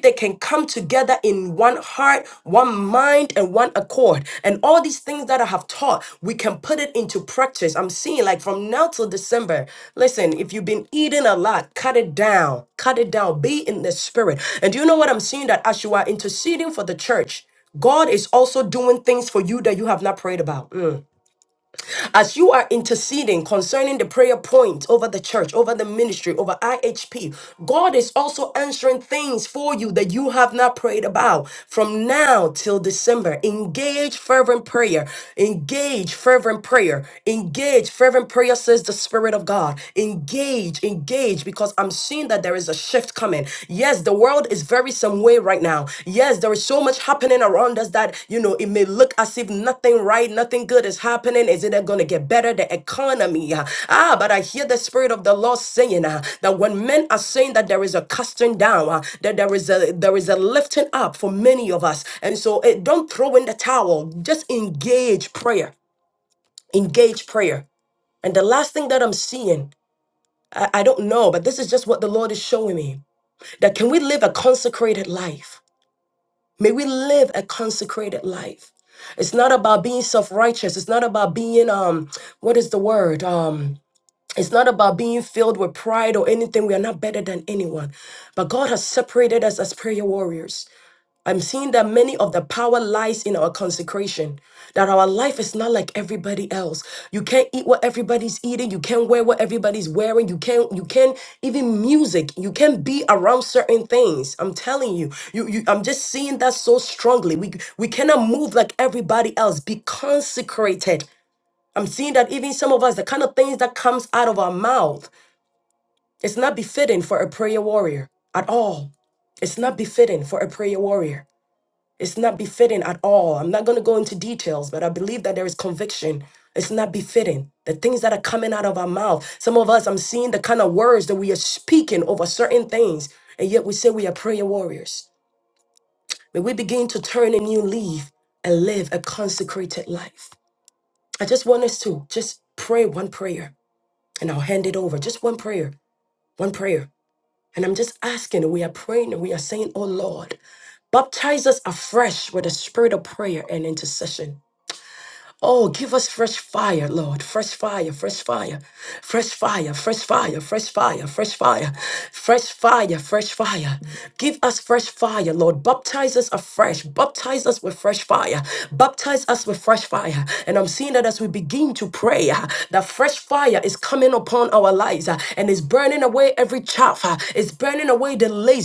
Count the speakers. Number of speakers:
1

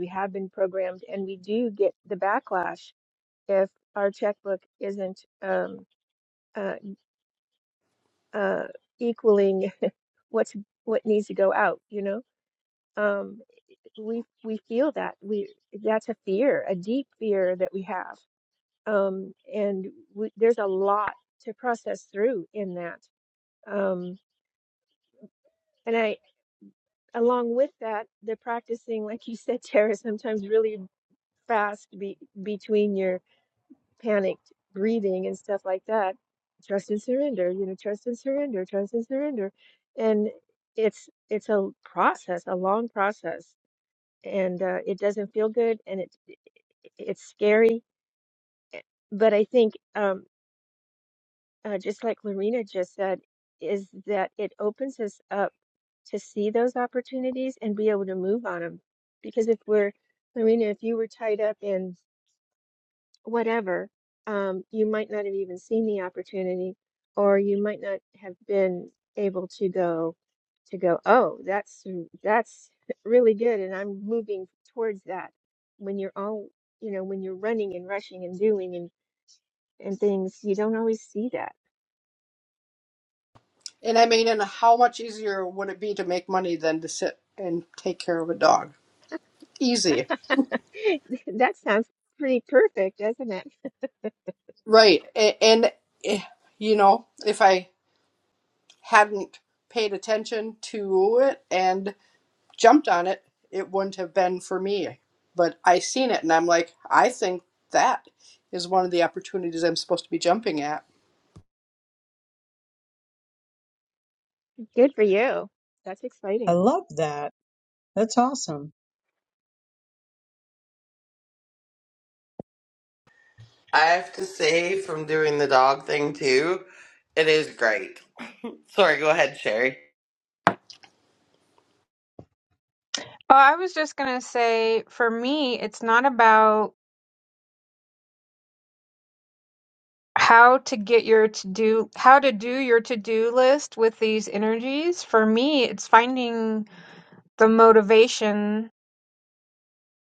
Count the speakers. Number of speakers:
5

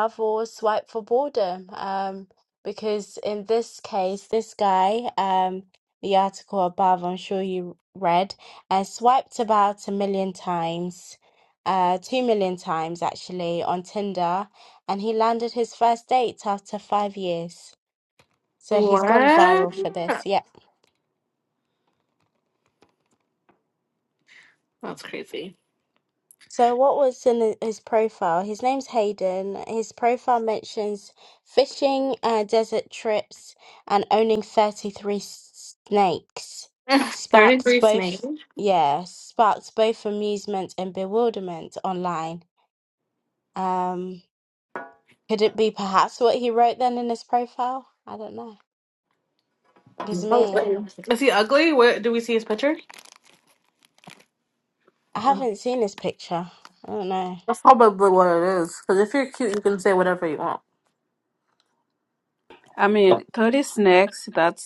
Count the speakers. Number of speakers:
3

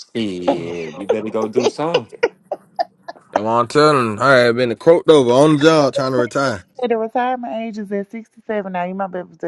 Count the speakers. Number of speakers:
3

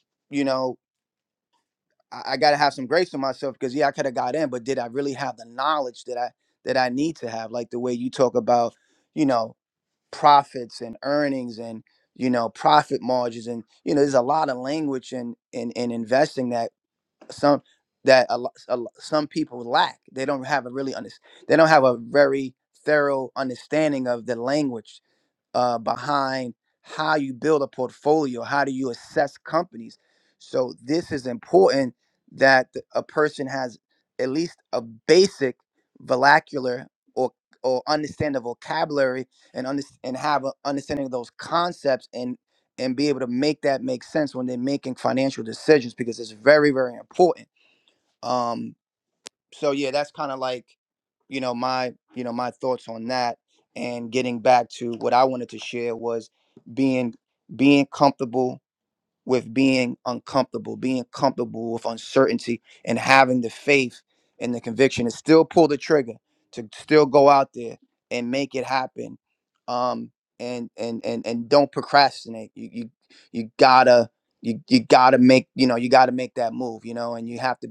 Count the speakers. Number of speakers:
1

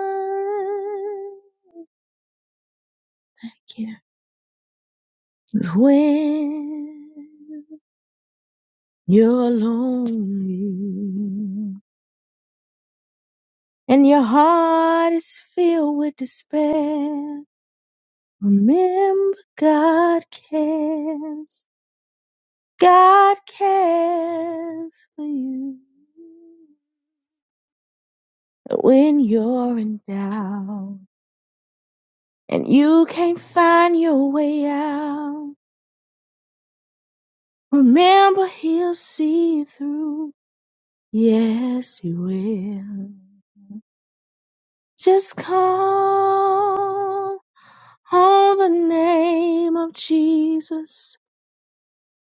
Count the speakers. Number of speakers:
1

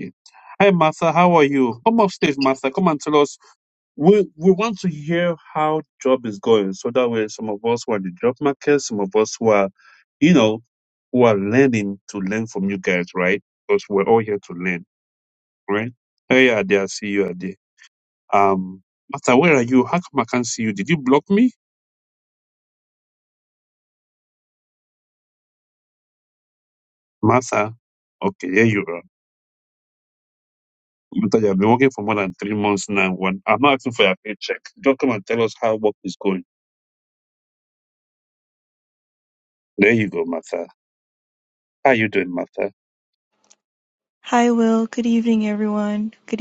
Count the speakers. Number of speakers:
2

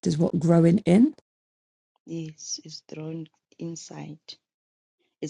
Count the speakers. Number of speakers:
2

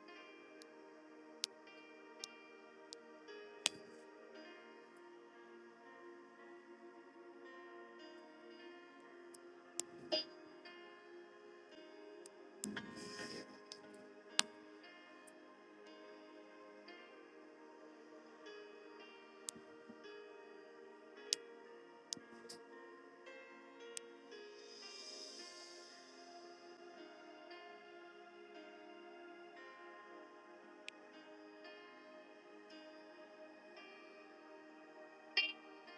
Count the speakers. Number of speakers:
0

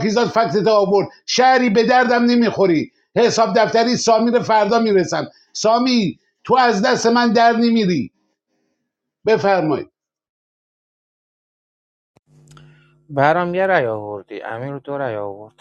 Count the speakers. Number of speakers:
2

